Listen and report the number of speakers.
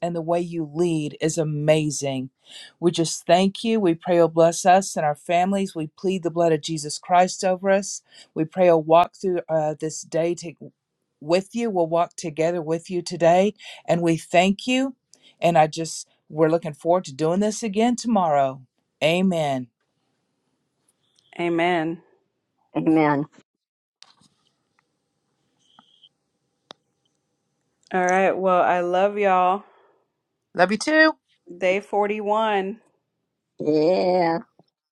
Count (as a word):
three